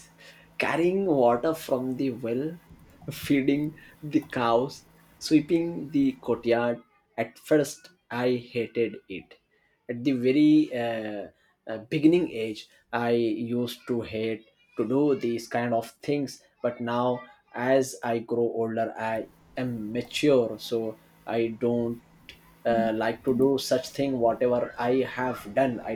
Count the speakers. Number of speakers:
1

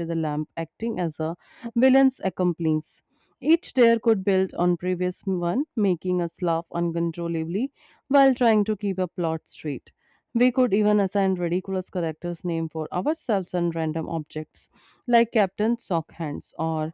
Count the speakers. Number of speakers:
1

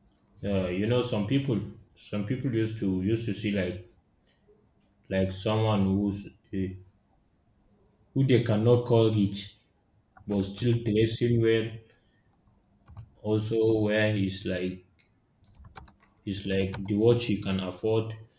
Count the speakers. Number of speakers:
1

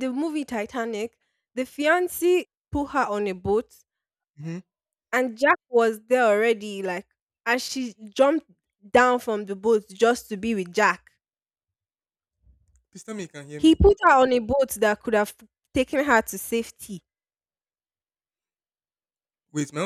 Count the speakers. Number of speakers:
2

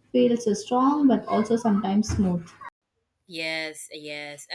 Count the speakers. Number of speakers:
2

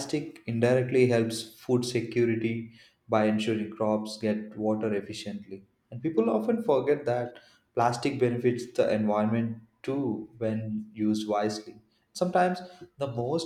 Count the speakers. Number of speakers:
1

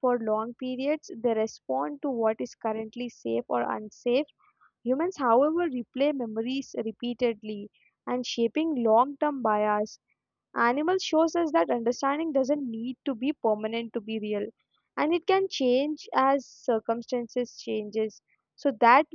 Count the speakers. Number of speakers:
1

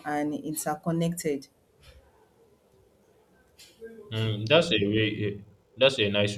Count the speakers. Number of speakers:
2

